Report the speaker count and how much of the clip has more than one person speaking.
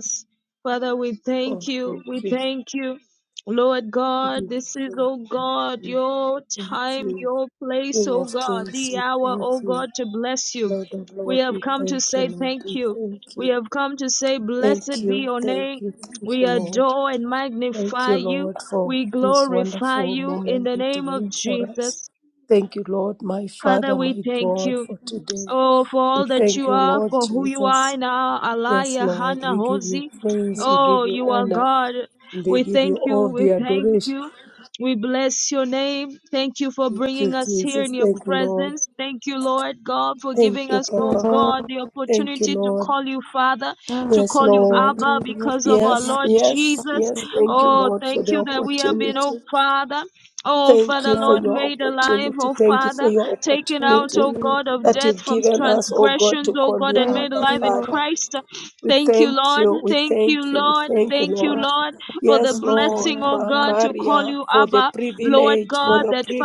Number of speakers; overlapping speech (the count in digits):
2, about 59%